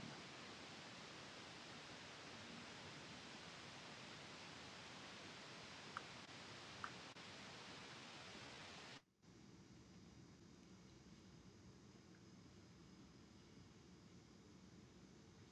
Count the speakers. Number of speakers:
zero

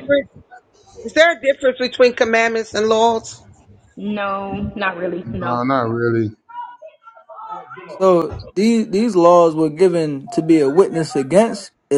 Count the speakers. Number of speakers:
four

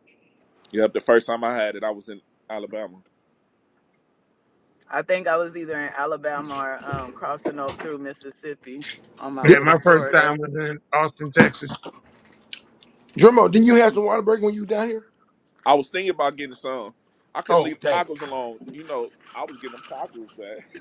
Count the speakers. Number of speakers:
four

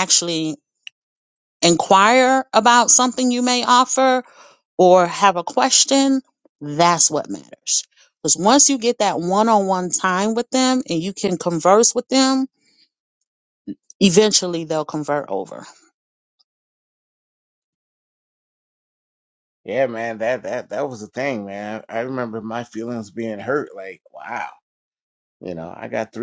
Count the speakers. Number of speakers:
two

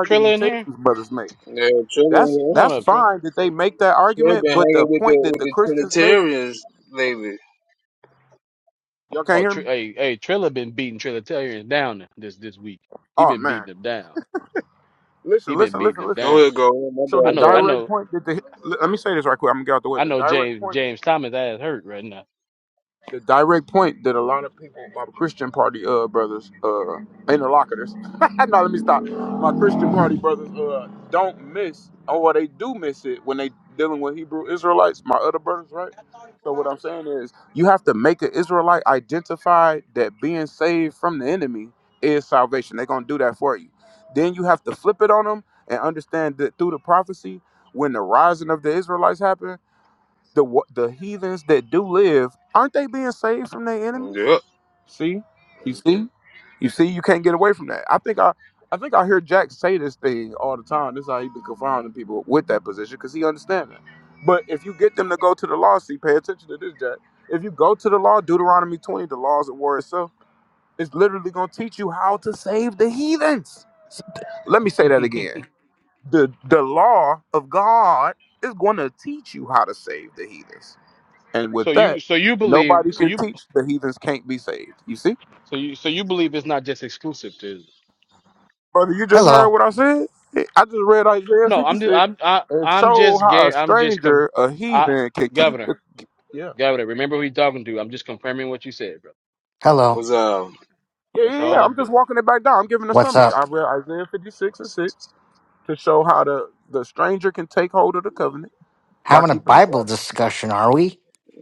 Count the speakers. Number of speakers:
four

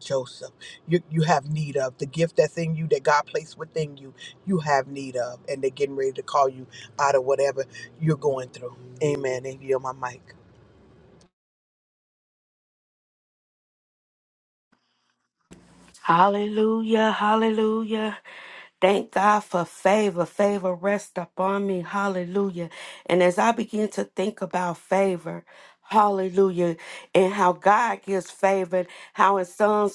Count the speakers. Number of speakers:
two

